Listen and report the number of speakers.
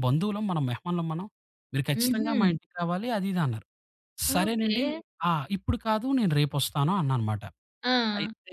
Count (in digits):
2